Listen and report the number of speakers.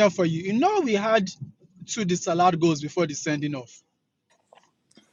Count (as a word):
one